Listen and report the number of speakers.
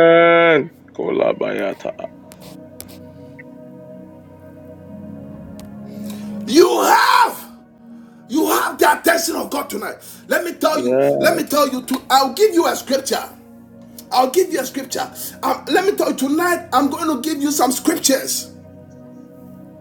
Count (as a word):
two